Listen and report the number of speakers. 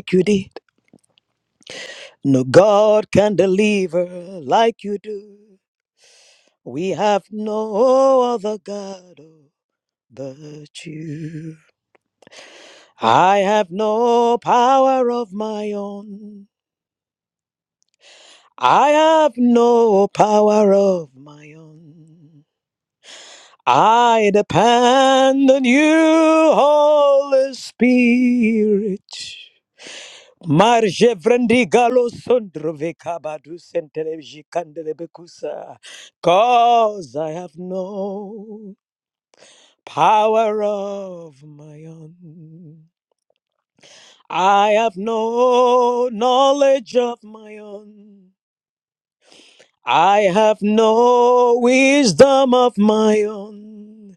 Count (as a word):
one